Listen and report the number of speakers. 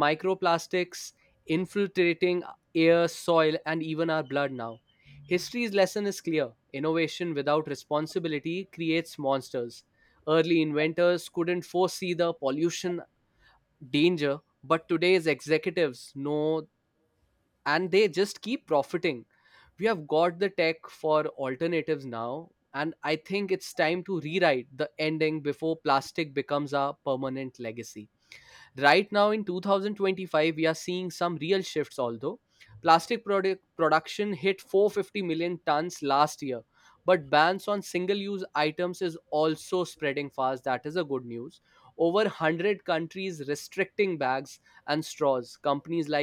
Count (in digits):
1